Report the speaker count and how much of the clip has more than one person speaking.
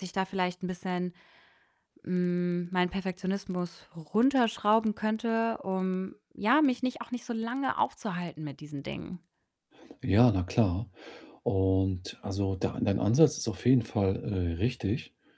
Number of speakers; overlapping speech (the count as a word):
two, no overlap